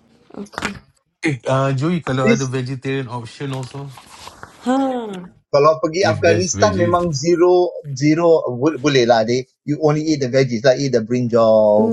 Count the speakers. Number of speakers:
3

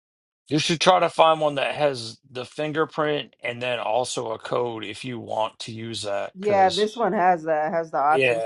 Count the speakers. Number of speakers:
2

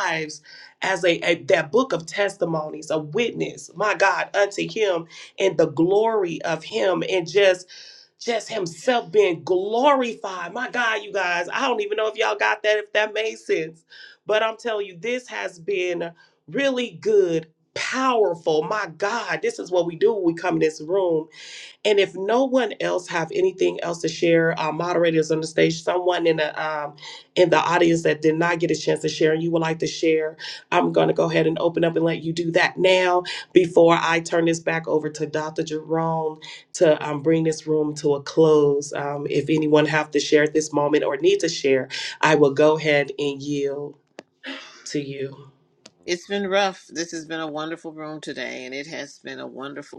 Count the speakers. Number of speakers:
2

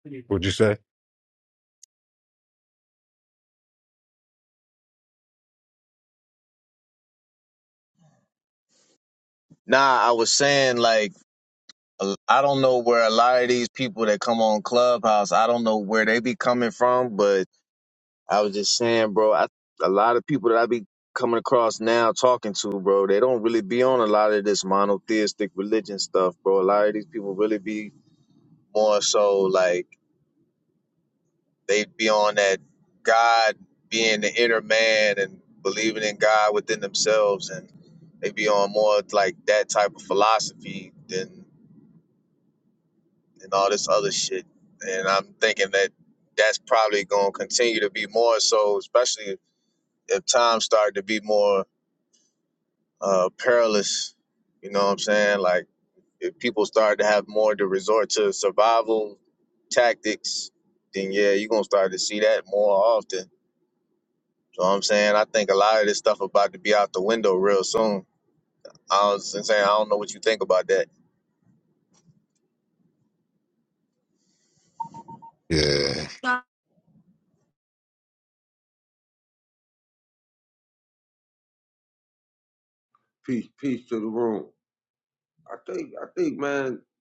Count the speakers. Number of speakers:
3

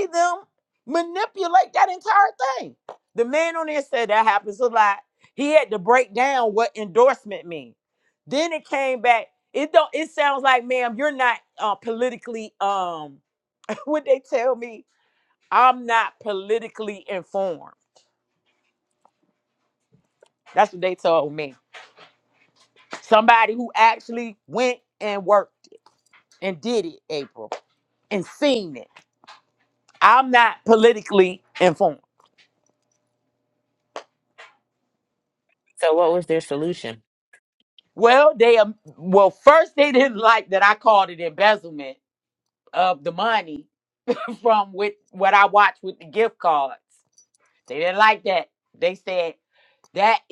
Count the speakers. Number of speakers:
2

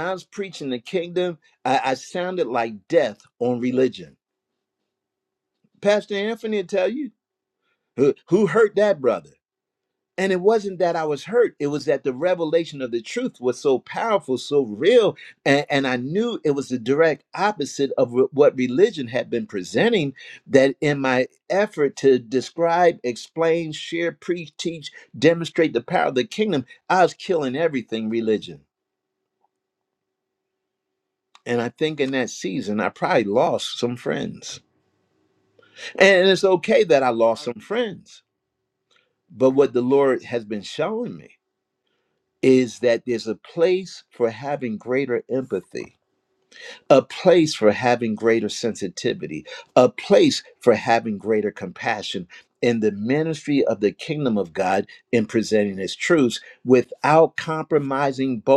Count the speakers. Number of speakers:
1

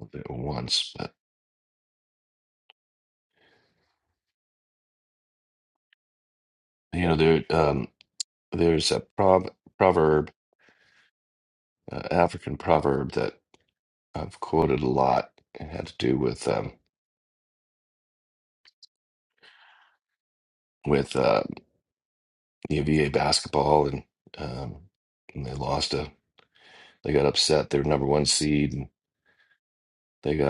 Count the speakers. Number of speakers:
1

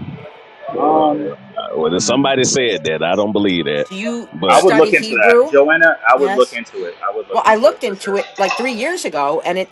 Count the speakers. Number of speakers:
3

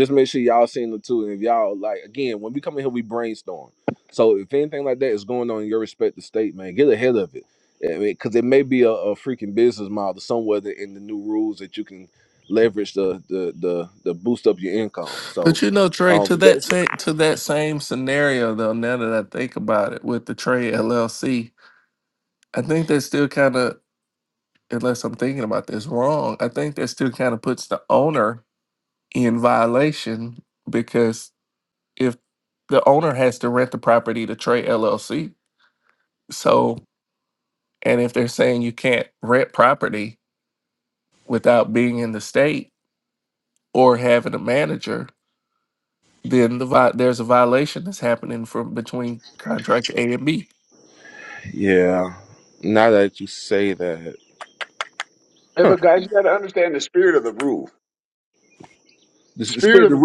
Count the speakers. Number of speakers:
3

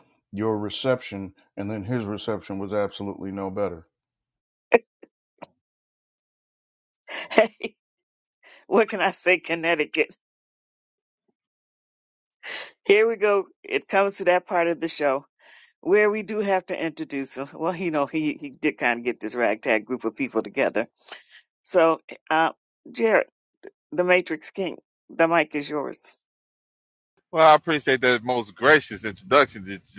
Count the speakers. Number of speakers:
3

